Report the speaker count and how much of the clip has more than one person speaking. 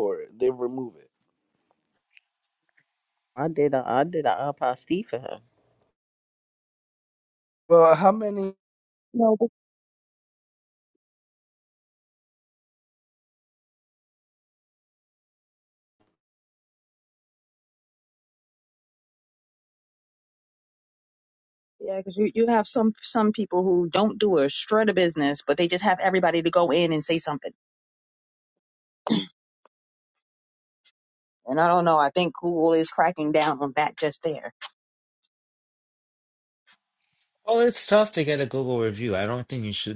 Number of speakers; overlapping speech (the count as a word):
four, no overlap